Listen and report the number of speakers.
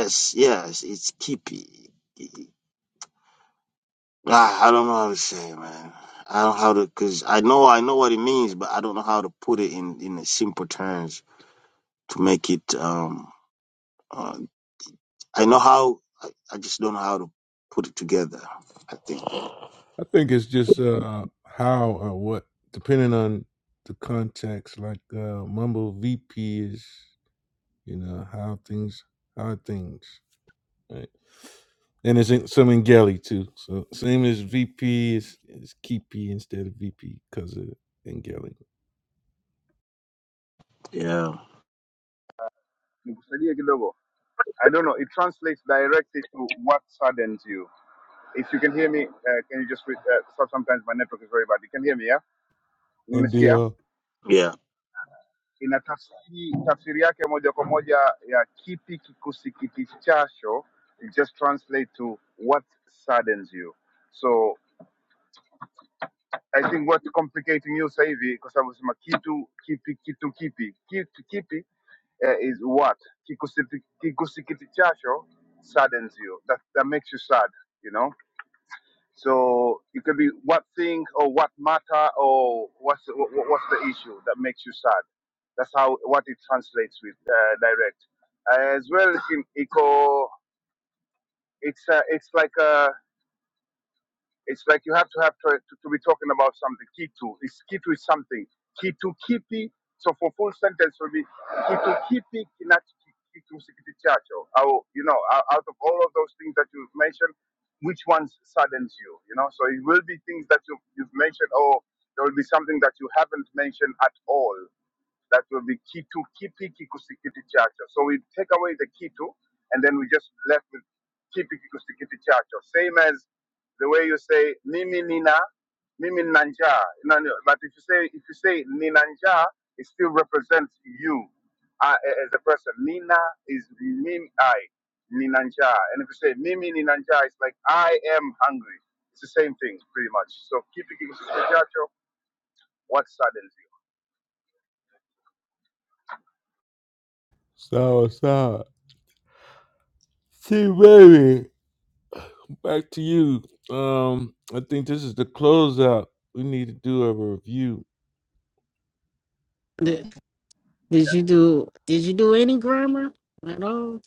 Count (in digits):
4